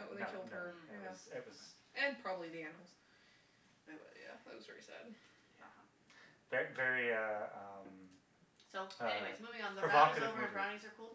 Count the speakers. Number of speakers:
3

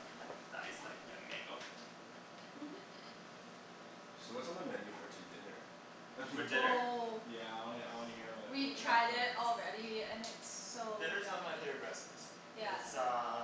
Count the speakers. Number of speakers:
4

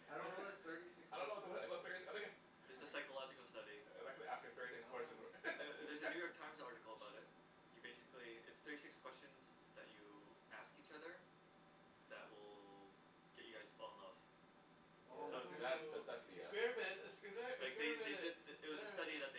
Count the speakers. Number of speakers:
4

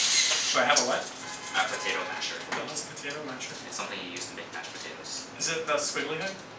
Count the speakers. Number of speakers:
2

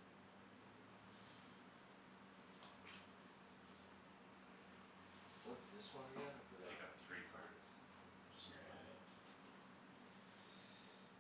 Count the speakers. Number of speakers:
2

